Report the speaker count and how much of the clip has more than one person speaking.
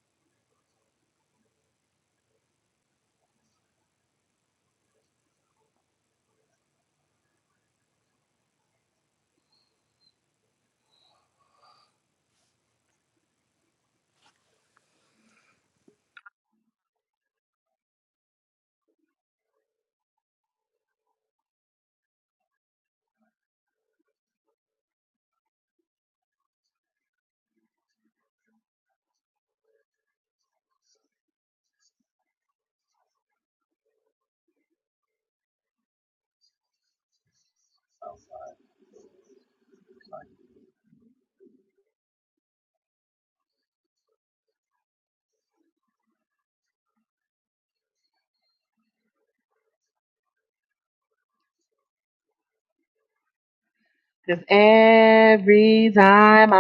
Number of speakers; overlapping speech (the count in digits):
1, no overlap